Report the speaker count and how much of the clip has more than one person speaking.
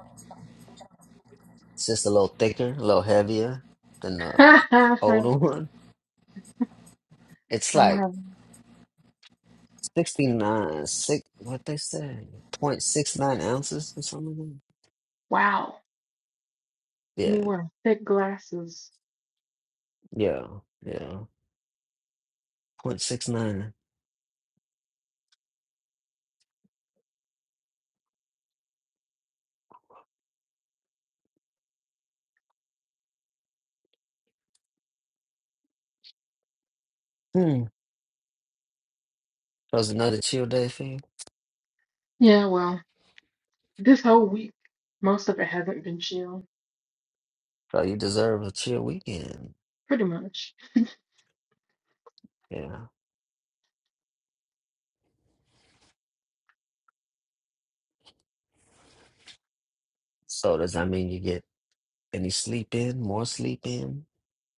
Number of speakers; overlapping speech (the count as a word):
two, about 1%